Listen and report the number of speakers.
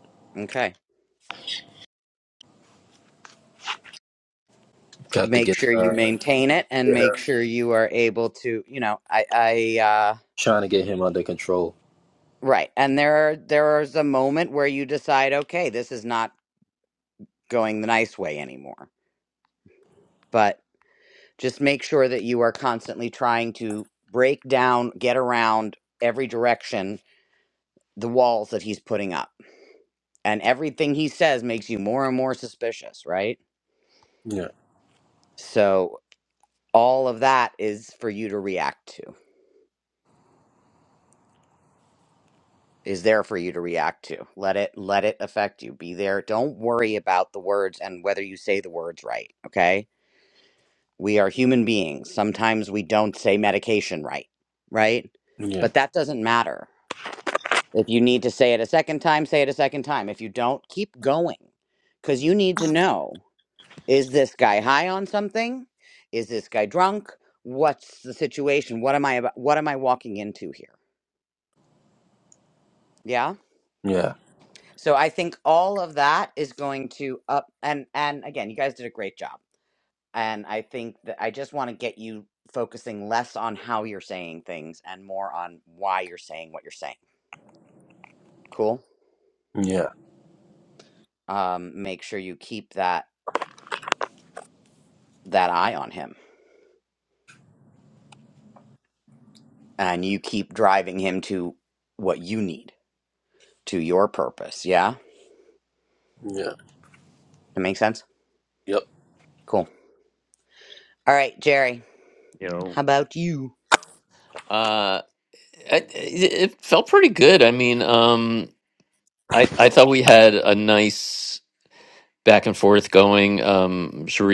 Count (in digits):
3